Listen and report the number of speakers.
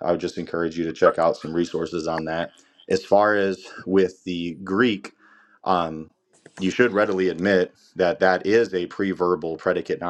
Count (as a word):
one